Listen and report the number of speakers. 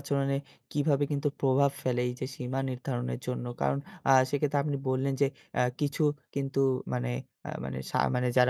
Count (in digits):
1